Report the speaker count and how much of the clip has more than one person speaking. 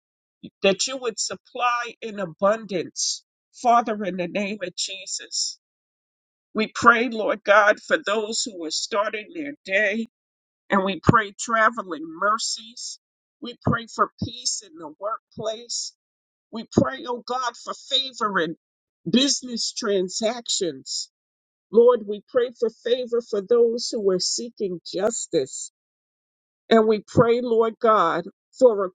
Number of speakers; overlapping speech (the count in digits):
1, no overlap